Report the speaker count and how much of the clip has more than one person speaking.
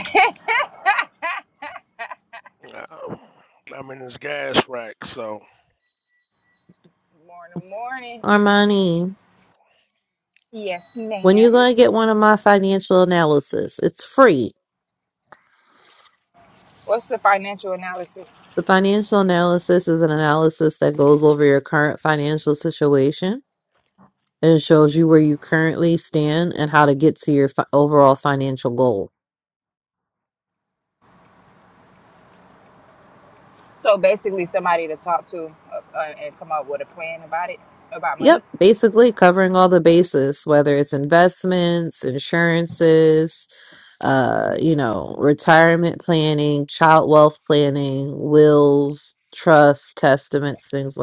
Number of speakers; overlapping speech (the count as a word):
three, about 1%